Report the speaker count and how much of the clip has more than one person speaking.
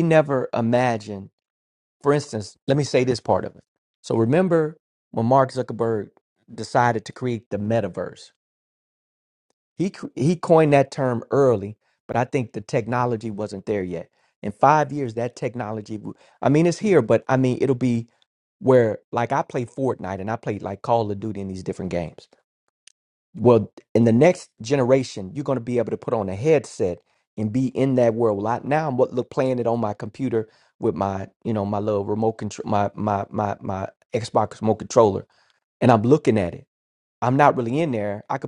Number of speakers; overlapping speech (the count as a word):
one, no overlap